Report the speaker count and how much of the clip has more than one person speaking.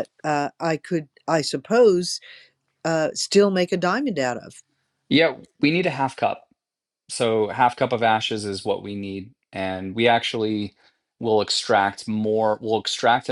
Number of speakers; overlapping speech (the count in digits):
2, no overlap